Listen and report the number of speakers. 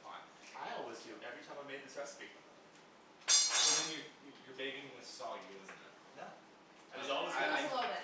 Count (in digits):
3